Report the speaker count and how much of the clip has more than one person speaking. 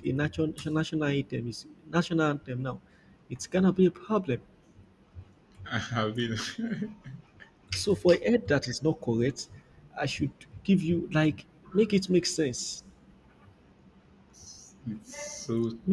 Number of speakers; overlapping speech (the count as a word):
two, about 1%